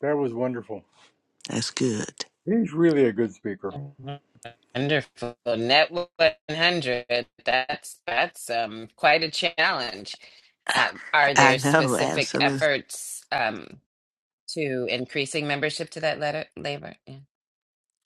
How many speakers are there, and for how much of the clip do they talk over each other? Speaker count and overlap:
3, about 7%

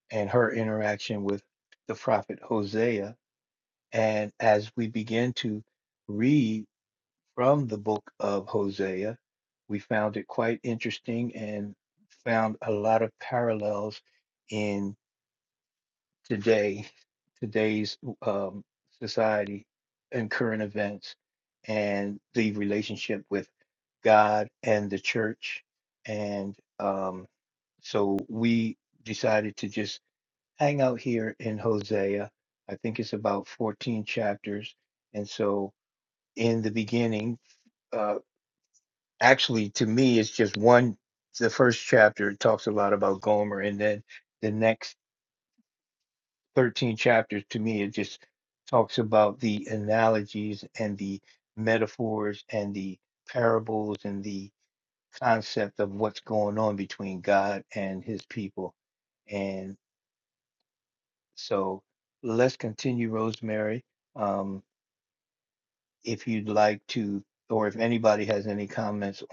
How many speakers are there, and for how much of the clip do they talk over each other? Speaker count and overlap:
1, no overlap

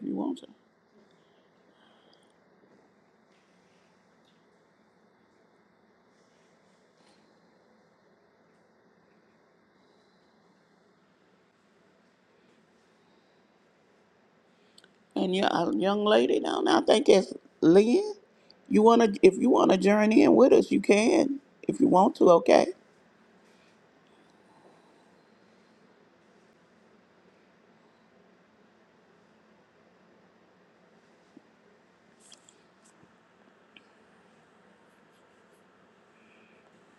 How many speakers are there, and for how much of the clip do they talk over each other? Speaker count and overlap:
1, no overlap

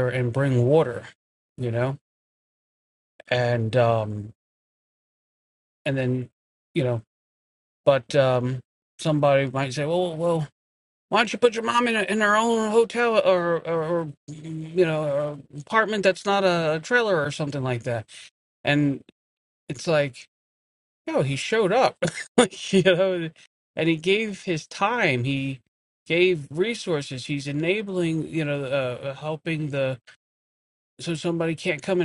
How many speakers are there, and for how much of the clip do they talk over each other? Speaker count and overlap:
1, no overlap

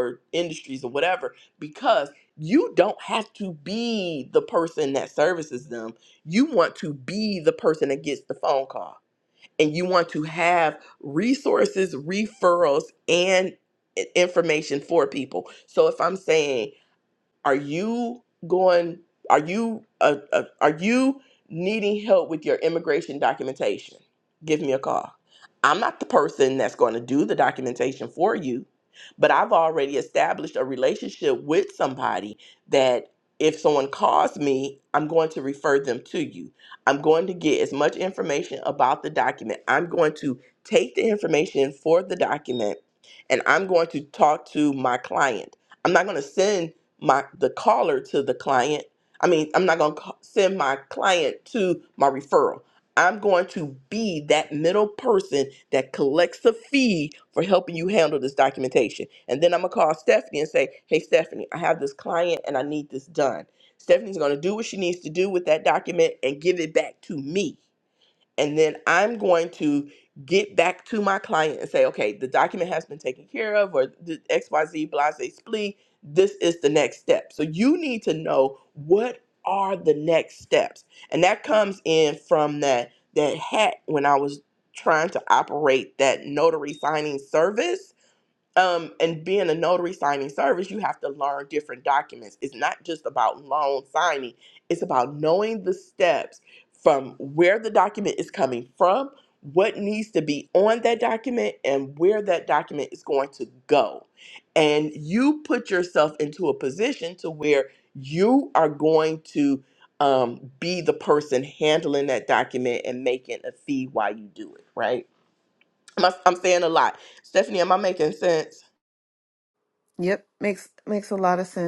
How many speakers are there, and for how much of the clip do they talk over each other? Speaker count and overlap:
2, no overlap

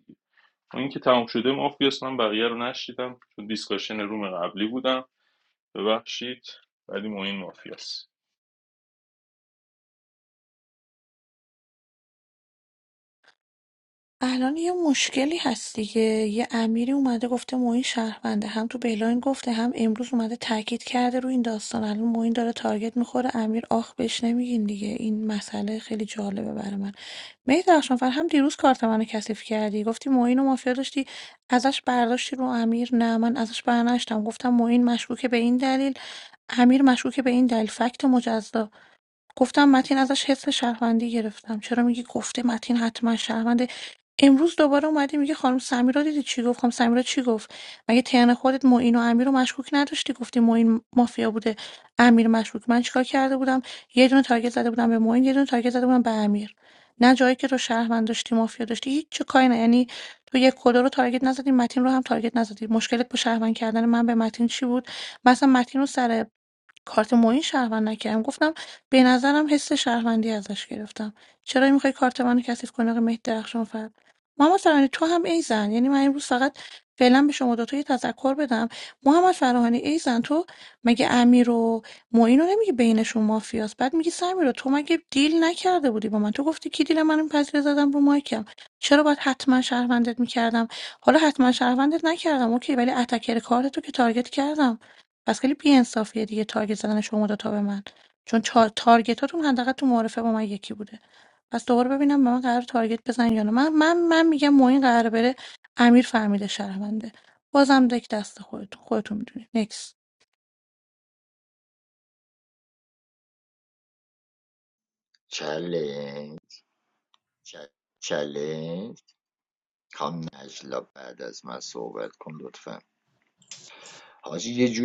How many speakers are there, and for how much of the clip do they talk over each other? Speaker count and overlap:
3, no overlap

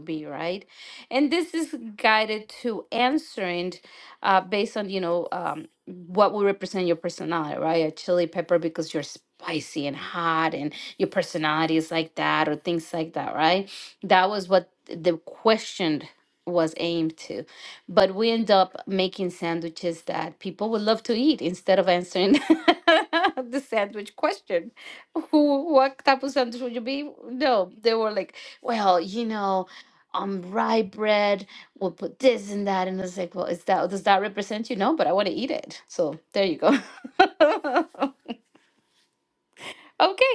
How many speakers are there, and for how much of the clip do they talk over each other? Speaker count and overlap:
1, no overlap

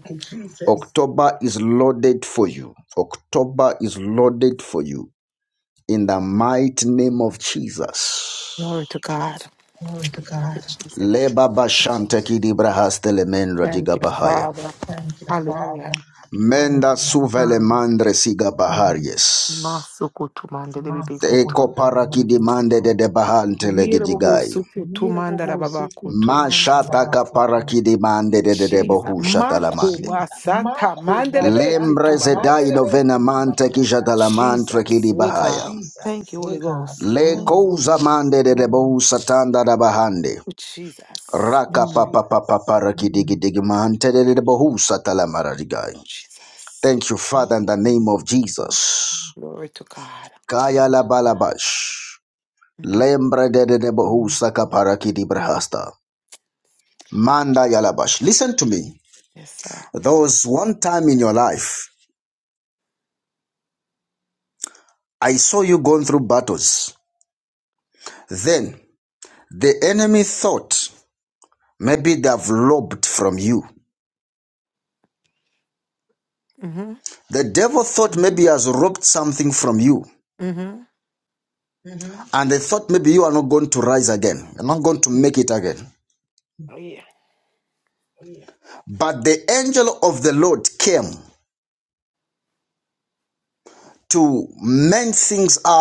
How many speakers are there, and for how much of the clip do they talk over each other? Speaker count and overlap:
2, about 9%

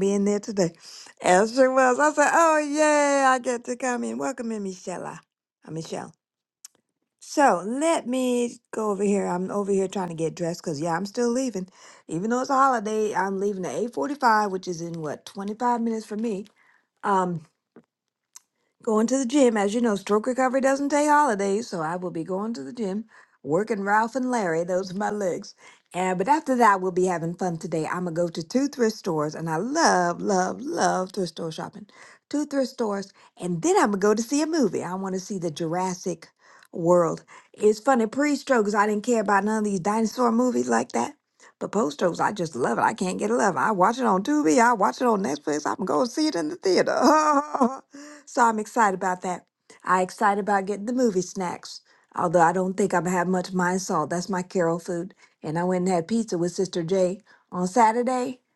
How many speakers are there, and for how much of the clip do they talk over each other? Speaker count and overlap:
1, no overlap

